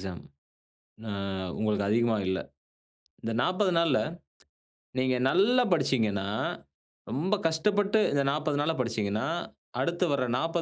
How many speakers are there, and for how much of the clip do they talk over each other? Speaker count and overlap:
1, no overlap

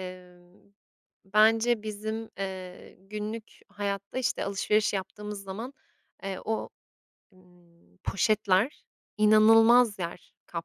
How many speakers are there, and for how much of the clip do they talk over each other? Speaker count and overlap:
1, no overlap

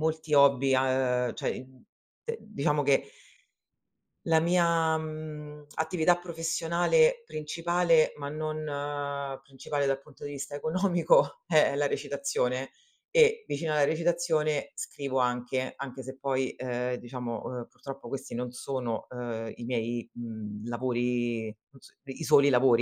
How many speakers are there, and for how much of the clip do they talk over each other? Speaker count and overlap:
1, no overlap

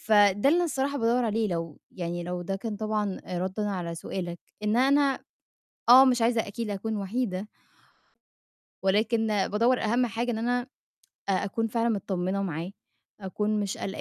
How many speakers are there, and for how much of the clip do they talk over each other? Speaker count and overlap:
1, no overlap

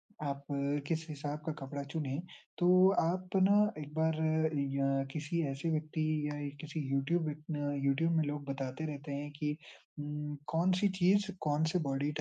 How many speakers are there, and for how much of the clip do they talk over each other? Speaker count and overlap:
1, no overlap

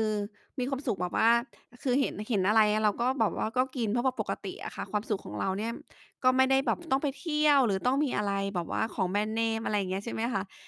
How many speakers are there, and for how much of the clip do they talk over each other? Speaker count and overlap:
1, no overlap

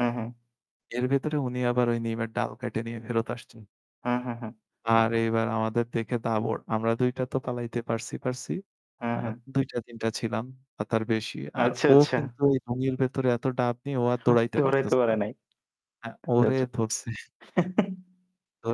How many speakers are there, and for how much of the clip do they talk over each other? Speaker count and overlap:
2, about 12%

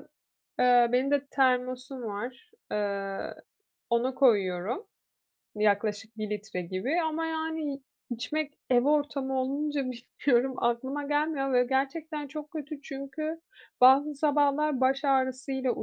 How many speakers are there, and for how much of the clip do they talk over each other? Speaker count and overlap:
1, no overlap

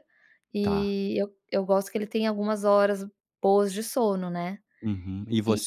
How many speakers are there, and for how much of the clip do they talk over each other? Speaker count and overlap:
2, about 8%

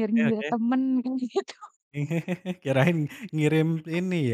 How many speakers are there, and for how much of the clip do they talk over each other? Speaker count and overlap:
2, about 9%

